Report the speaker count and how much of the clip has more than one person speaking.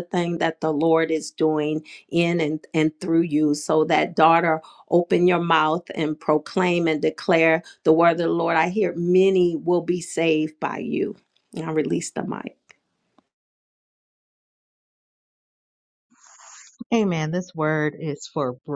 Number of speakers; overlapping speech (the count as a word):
two, no overlap